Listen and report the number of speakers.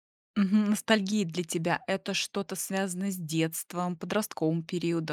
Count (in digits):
1